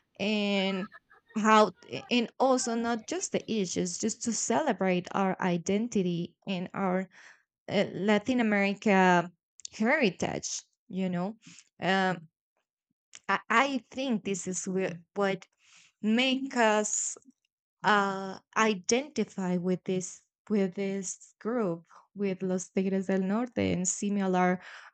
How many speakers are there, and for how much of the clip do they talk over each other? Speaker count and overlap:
1, no overlap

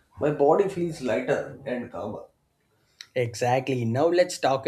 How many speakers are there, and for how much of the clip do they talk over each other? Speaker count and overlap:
2, no overlap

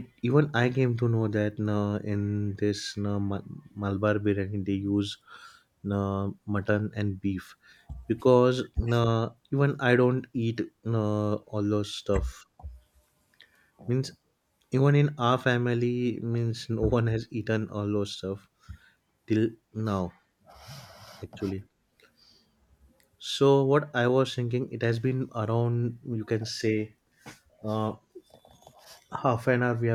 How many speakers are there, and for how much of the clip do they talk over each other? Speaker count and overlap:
1, no overlap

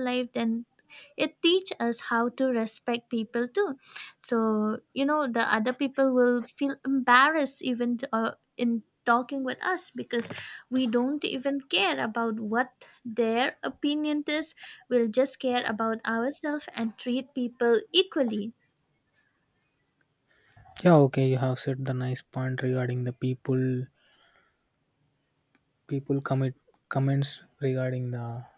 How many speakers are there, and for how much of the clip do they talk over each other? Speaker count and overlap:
2, no overlap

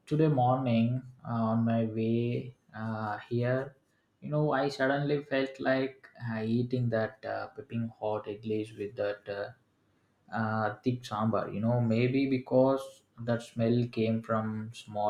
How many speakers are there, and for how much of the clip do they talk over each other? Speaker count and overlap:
1, no overlap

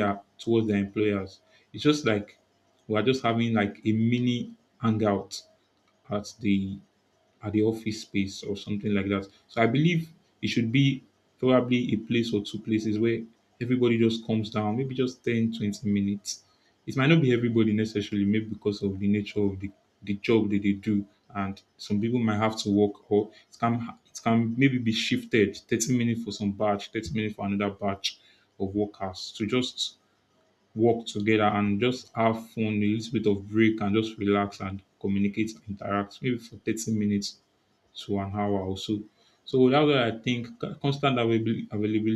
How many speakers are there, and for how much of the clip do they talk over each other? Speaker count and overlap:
1, no overlap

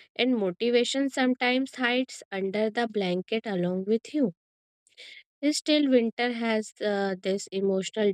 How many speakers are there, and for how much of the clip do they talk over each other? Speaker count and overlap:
1, no overlap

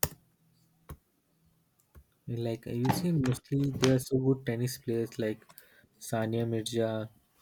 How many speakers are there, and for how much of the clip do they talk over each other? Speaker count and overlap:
1, no overlap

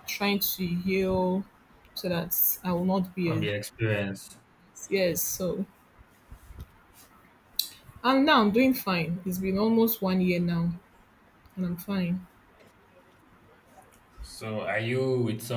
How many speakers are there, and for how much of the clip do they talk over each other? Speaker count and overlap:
2, about 1%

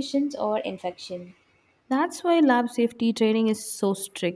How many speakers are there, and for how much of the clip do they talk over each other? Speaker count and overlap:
2, no overlap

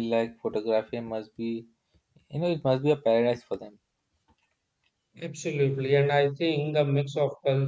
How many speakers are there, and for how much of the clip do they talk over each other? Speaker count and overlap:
2, no overlap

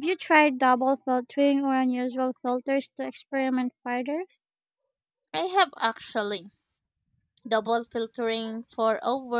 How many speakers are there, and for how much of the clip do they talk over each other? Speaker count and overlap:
2, no overlap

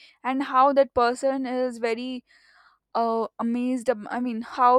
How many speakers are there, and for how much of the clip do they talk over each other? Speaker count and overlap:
1, no overlap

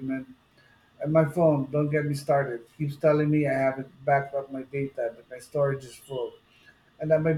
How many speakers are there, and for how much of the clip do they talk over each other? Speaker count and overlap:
1, no overlap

